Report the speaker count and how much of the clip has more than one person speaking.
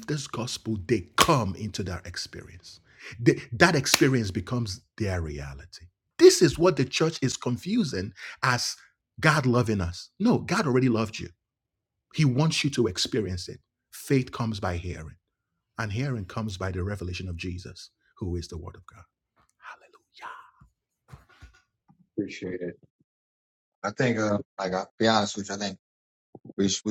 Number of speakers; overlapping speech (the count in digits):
2, no overlap